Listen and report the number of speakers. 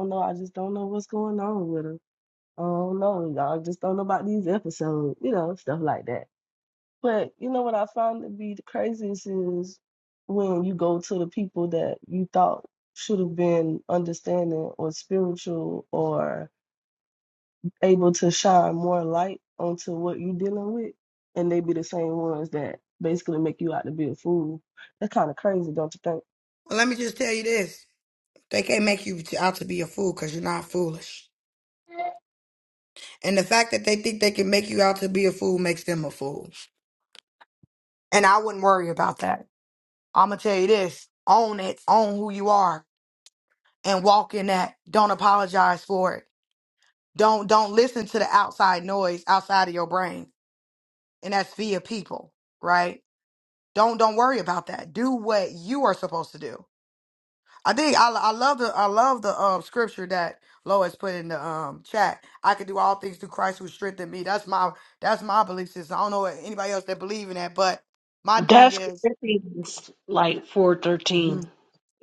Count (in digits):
3